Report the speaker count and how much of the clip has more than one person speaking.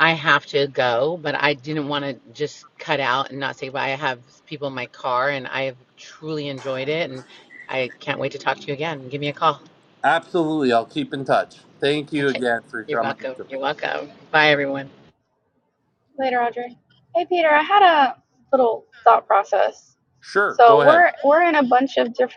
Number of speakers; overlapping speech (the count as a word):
three, about 6%